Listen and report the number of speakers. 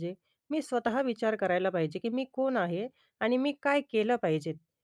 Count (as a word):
one